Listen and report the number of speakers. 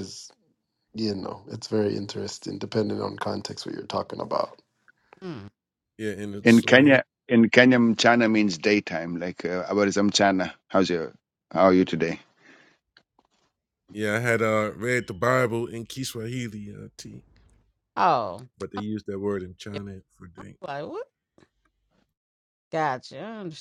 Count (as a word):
four